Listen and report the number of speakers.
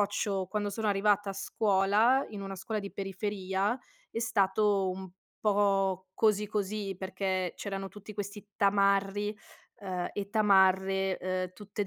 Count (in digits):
1